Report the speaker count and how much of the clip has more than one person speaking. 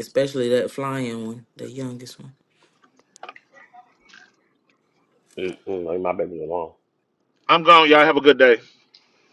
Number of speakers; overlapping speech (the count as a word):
three, no overlap